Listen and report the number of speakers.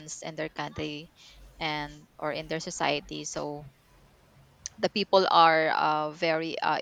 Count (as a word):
one